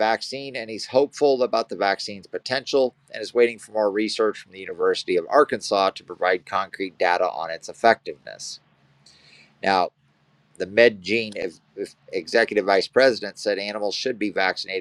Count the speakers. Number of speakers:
one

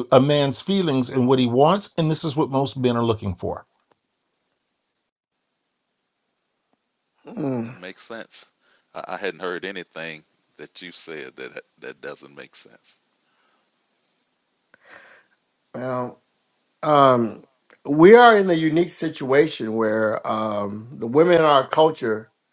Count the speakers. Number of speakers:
three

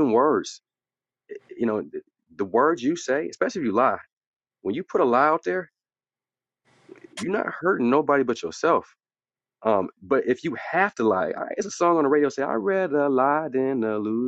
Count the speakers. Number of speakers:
one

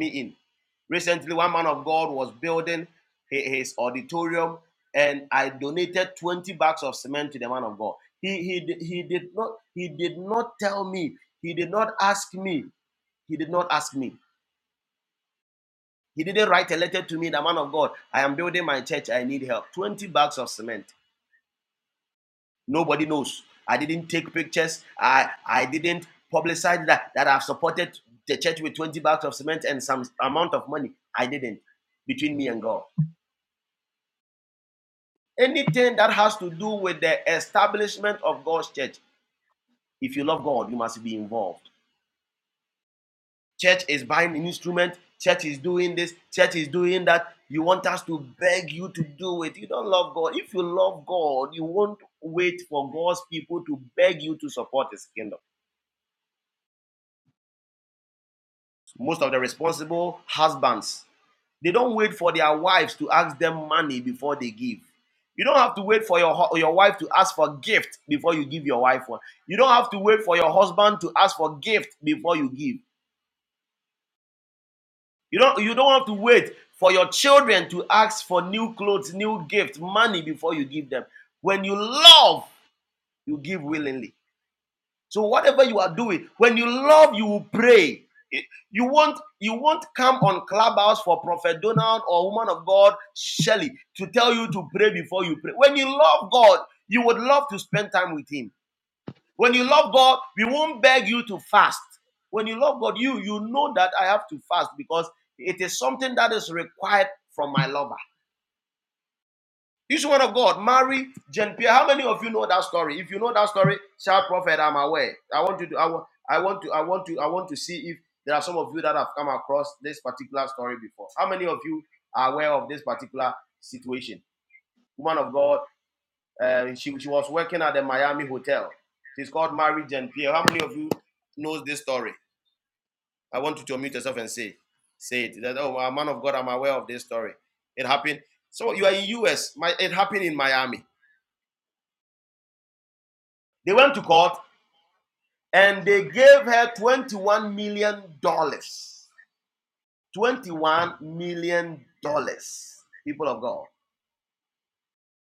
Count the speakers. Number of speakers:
one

